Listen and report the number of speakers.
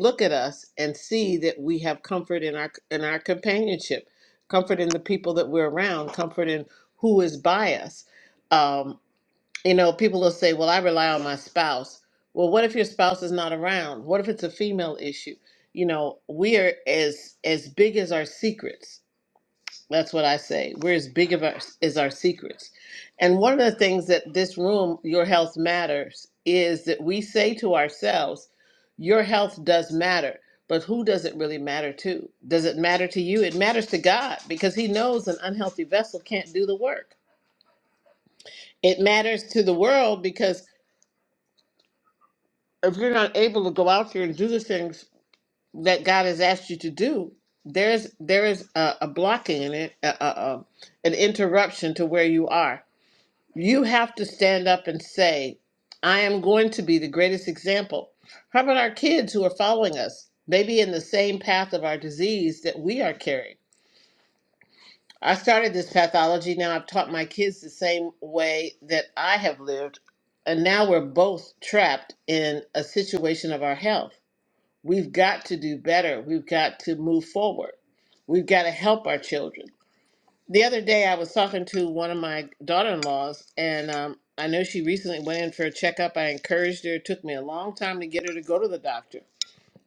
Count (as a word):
one